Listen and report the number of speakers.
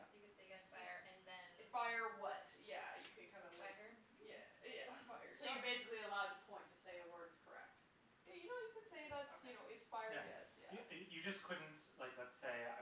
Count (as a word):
four